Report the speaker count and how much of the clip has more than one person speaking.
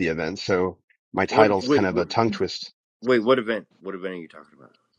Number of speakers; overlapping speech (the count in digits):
2, about 16%